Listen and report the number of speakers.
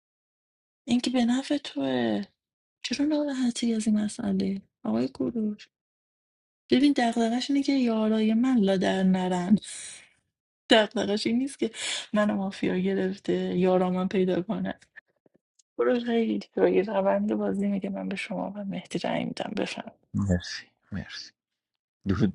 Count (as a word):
two